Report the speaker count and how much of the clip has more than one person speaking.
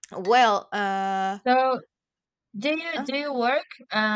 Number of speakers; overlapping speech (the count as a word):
two, about 4%